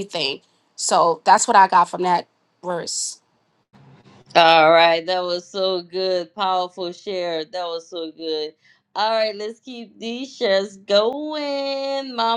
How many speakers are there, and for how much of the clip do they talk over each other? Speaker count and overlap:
two, no overlap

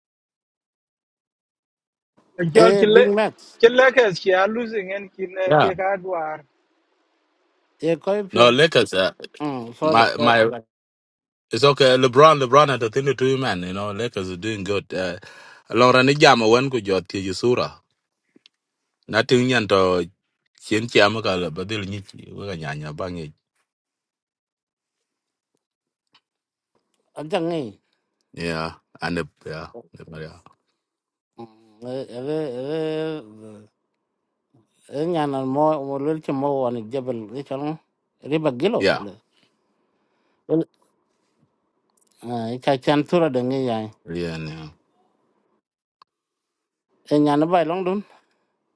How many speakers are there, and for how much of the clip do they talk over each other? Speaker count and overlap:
three, about 4%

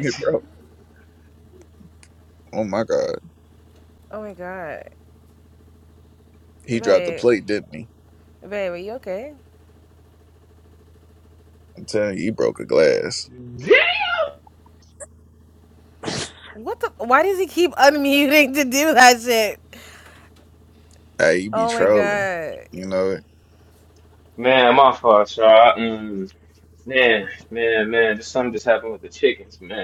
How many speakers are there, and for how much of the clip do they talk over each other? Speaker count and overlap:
three, about 5%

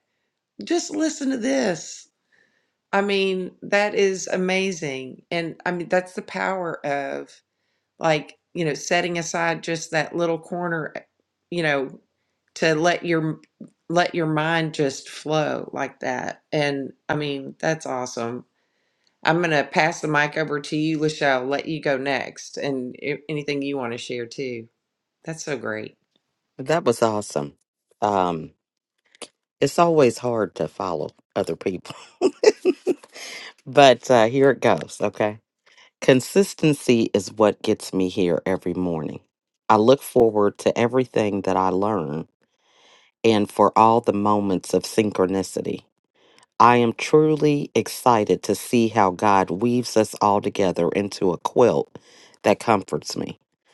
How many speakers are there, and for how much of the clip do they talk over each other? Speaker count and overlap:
two, no overlap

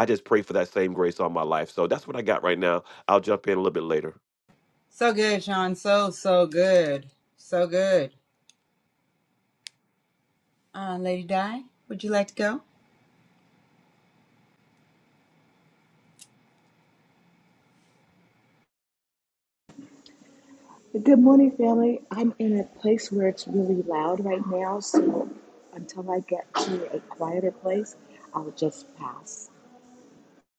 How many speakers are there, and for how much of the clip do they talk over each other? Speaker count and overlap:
three, no overlap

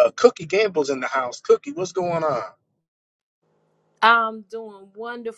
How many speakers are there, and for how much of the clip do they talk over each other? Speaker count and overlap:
two, no overlap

